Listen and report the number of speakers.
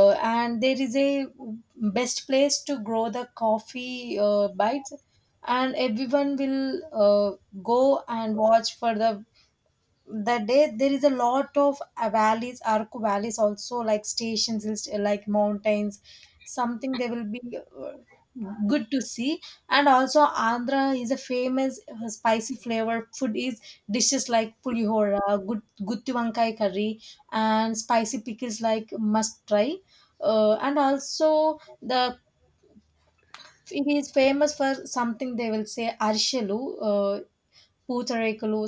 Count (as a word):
one